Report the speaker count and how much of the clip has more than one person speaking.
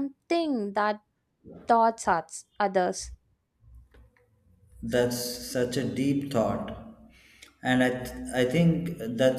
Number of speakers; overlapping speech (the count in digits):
2, no overlap